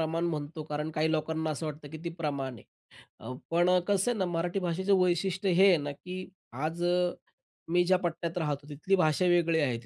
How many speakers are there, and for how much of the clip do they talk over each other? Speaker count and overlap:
1, no overlap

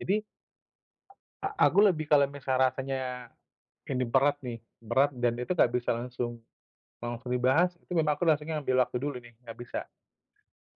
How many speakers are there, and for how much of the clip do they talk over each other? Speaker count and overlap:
1, no overlap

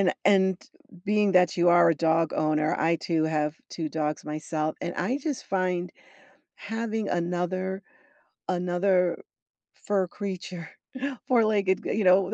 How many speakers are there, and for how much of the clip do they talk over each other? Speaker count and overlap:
1, no overlap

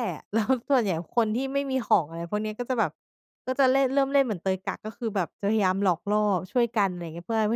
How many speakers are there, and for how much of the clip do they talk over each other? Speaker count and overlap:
1, no overlap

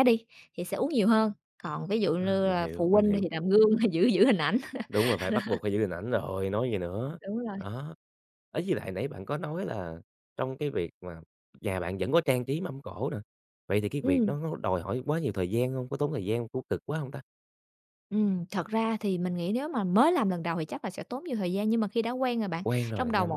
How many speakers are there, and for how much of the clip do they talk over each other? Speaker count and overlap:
2, about 9%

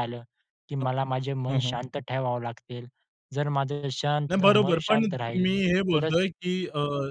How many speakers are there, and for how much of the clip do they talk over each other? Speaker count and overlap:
2, about 24%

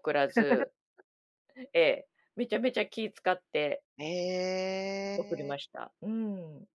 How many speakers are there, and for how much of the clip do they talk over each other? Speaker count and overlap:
2, about 1%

